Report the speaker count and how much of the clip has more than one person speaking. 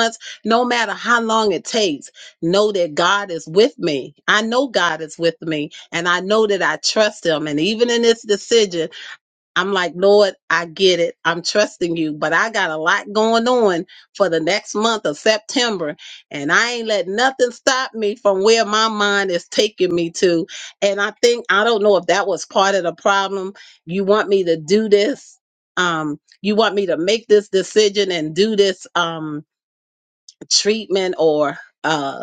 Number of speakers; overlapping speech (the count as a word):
one, no overlap